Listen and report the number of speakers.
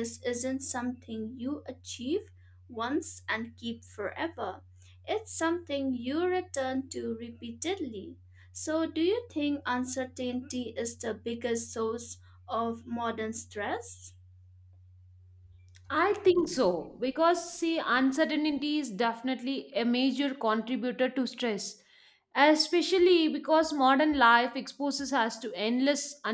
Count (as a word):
two